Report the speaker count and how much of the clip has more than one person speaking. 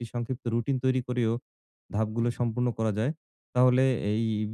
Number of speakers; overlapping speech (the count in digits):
1, no overlap